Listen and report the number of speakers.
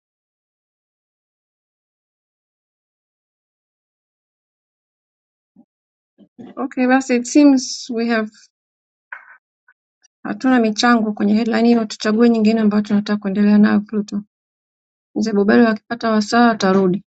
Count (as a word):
one